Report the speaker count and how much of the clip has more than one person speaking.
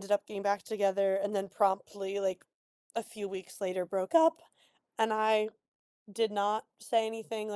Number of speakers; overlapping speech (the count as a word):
one, no overlap